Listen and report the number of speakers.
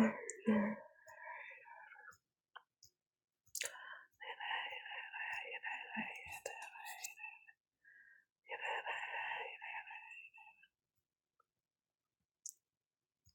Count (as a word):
zero